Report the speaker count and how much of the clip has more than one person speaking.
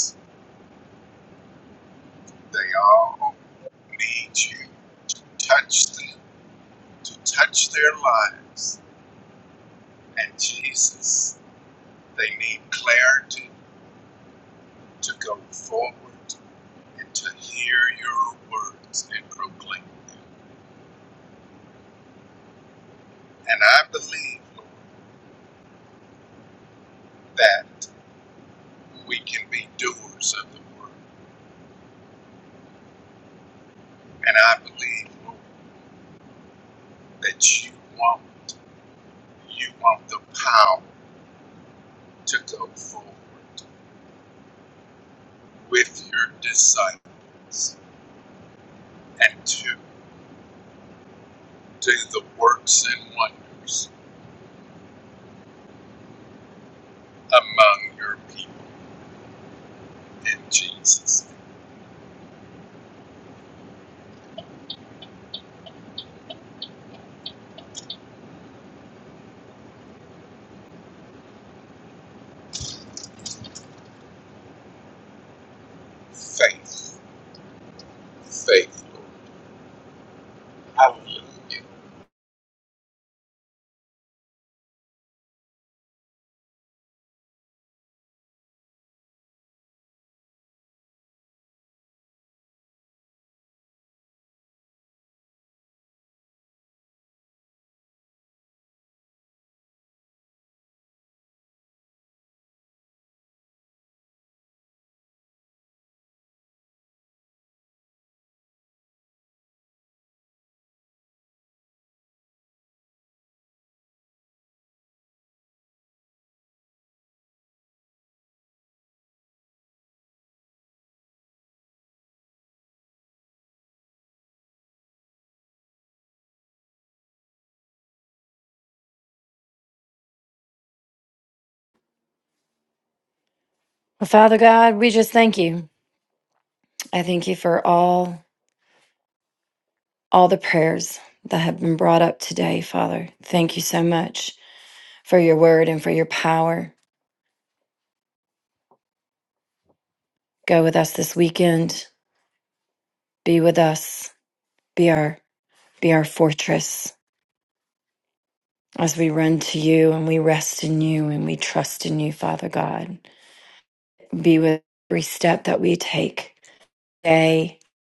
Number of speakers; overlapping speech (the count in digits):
2, no overlap